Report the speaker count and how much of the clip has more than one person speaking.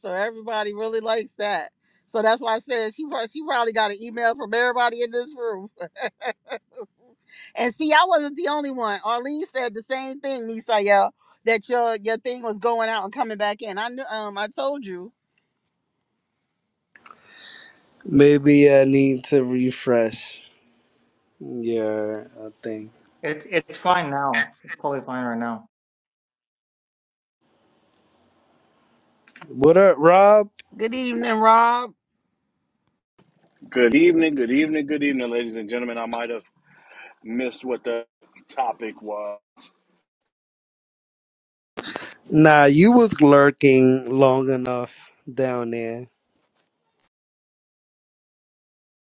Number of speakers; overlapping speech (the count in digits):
4, no overlap